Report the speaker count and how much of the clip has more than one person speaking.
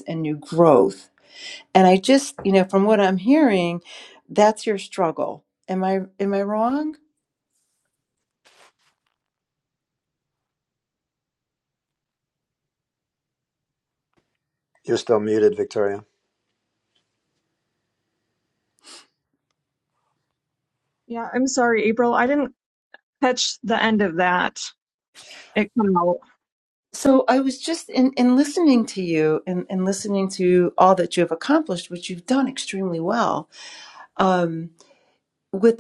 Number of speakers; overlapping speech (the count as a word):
three, no overlap